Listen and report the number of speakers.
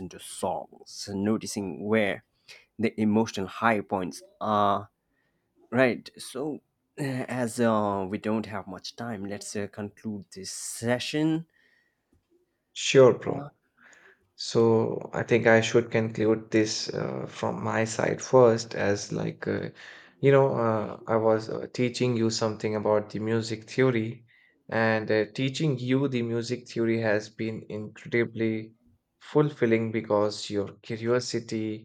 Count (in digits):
2